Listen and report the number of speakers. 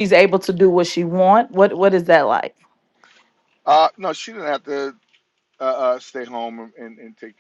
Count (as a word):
two